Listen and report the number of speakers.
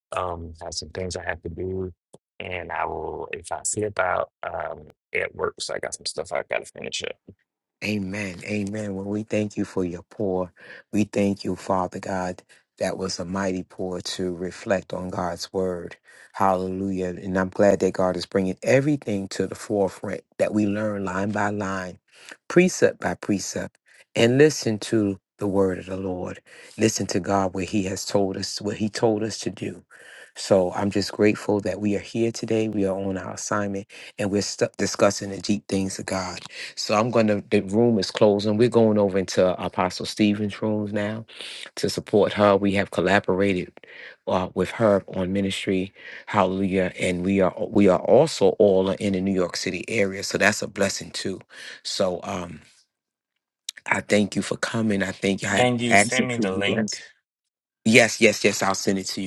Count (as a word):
two